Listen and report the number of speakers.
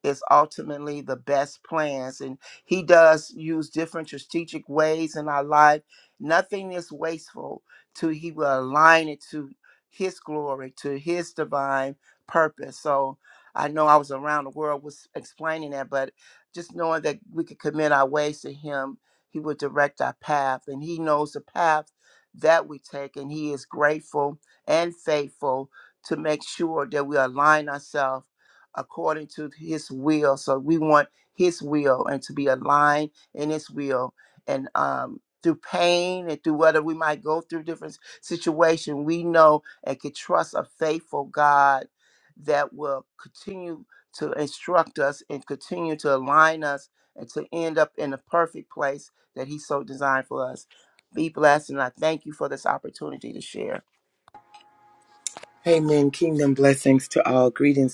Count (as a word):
two